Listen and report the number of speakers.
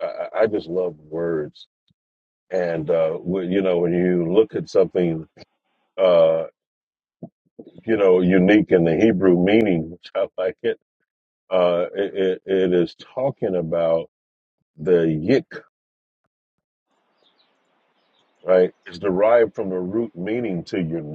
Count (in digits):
1